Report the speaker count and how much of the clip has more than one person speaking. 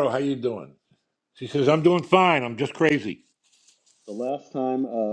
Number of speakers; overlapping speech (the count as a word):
two, no overlap